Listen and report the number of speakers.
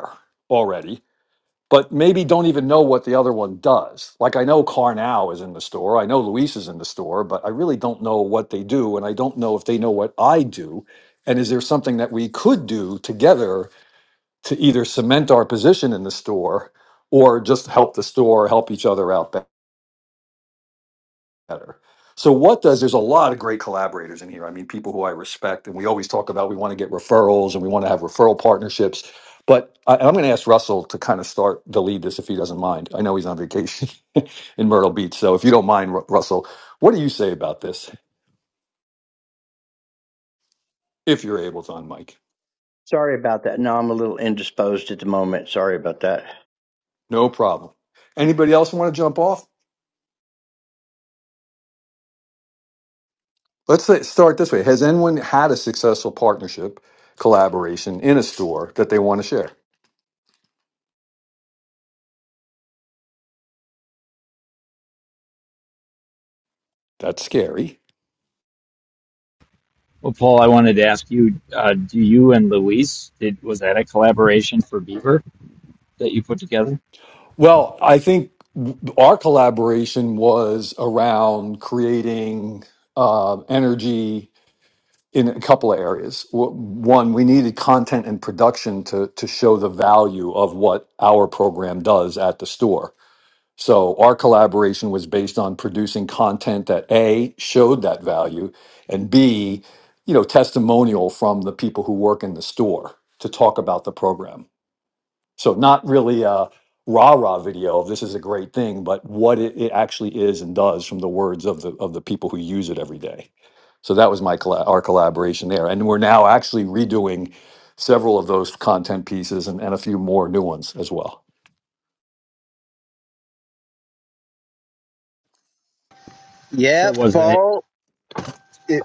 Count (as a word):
four